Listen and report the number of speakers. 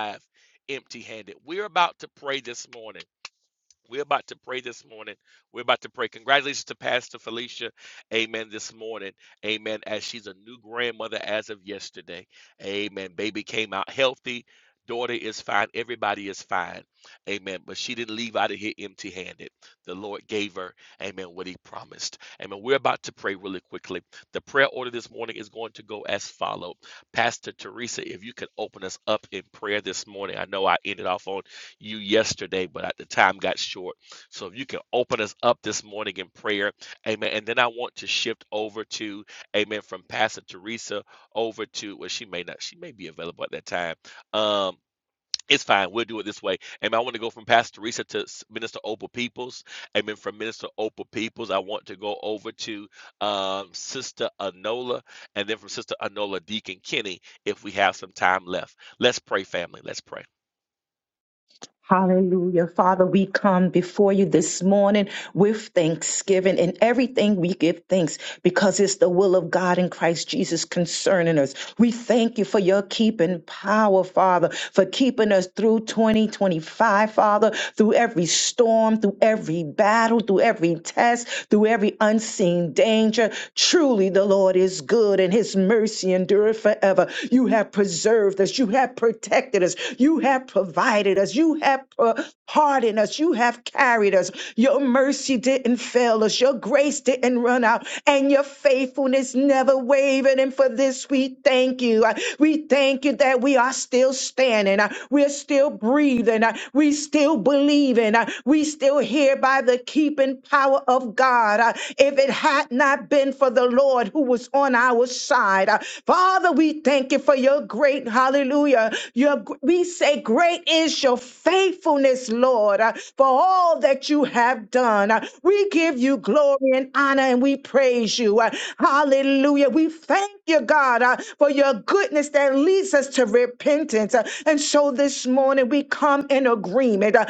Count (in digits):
2